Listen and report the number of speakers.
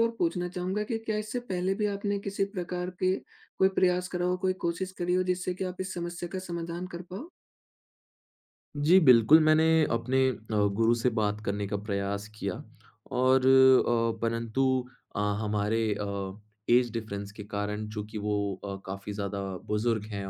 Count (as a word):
two